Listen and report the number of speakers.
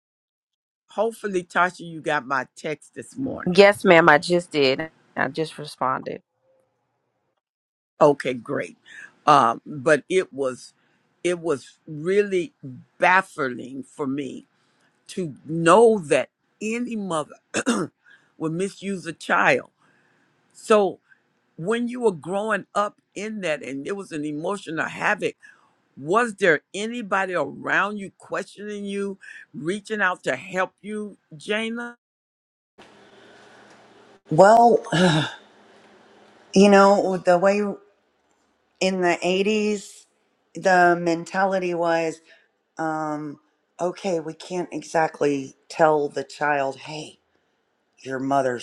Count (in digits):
3